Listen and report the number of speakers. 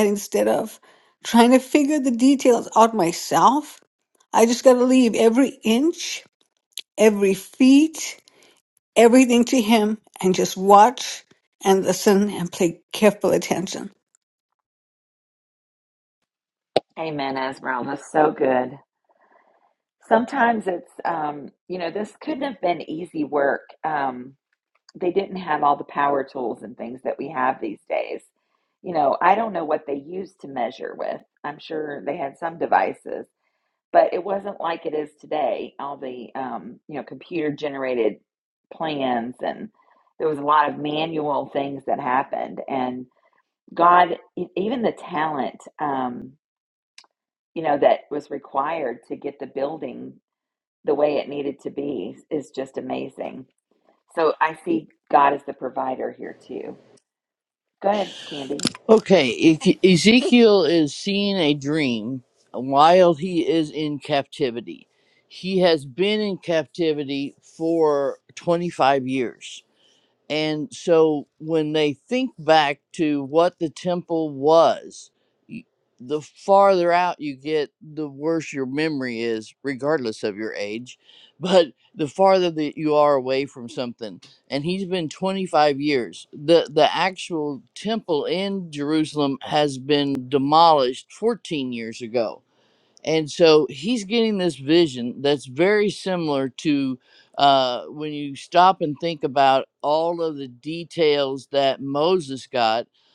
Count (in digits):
3